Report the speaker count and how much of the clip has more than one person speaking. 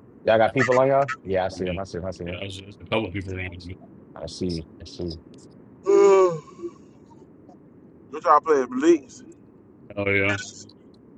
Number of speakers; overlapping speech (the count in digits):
3, about 6%